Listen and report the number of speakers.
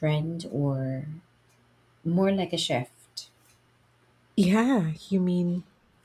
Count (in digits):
2